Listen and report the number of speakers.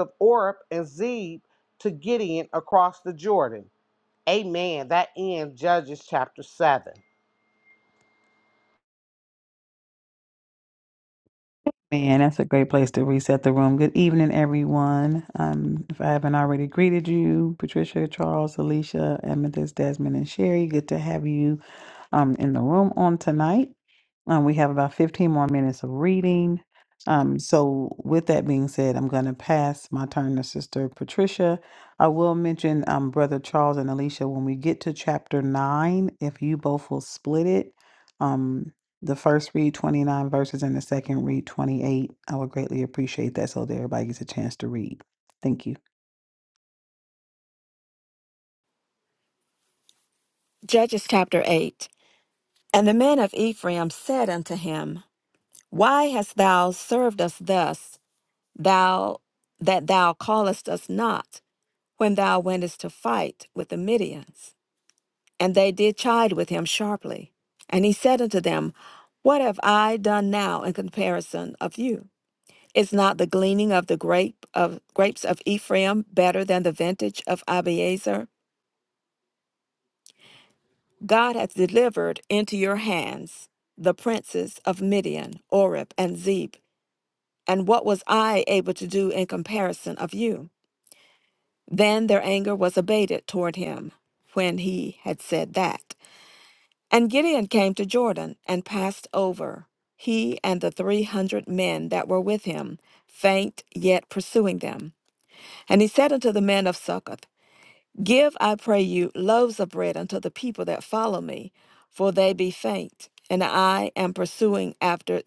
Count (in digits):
3